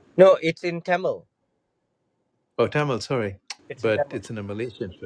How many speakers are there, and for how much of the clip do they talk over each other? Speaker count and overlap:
2, about 7%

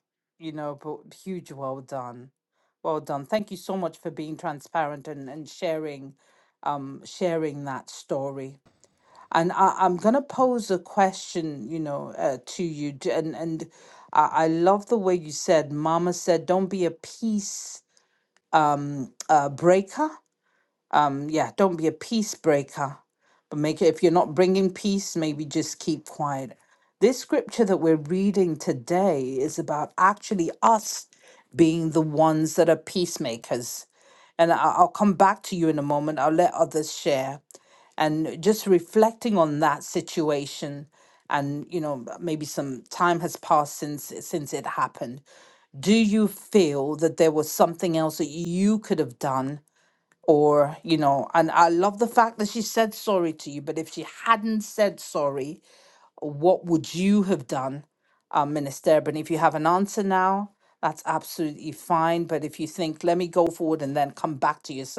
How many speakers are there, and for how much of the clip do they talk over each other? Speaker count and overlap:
1, no overlap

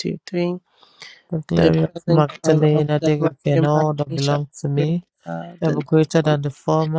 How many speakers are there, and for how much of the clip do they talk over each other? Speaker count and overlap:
2, about 40%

